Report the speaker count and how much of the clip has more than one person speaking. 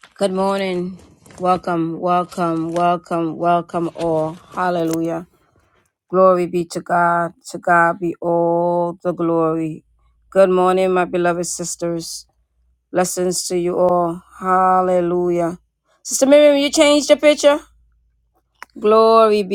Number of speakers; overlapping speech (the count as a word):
one, no overlap